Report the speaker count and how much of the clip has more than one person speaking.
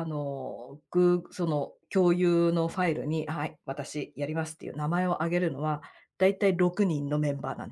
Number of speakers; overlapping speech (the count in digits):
1, no overlap